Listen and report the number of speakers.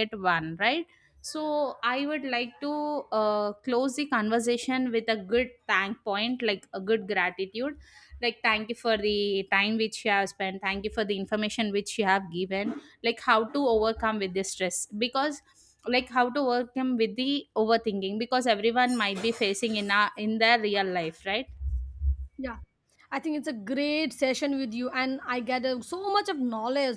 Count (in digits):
2